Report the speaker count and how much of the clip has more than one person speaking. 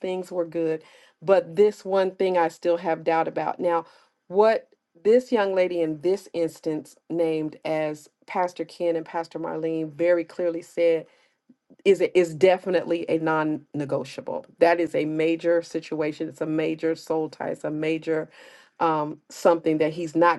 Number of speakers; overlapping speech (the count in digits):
1, no overlap